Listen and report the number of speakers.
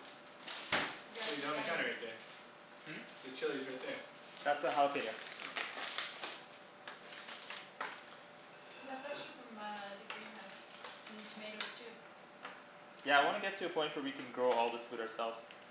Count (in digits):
3